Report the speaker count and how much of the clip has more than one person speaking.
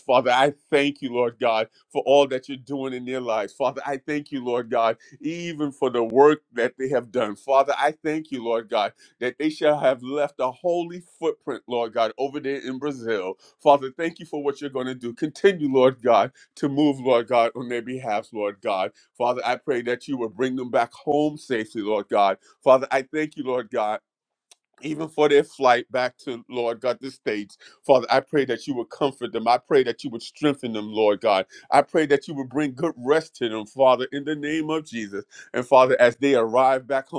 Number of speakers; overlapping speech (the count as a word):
one, no overlap